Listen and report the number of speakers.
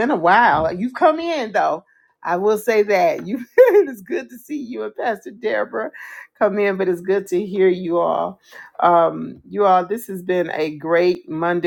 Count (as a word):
one